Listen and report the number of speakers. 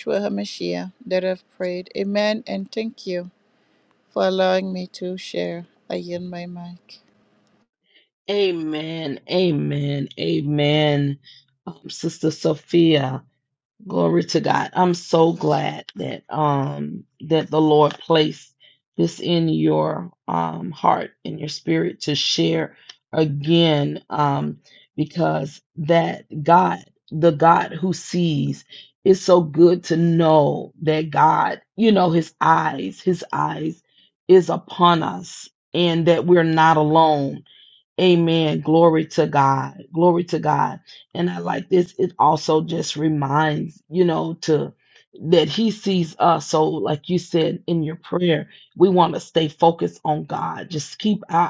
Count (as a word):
two